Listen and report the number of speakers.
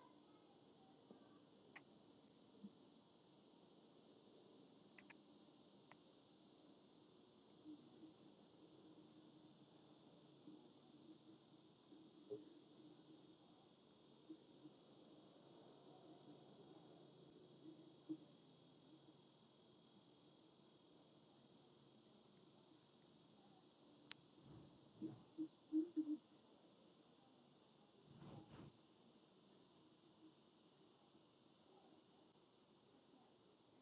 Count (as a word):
zero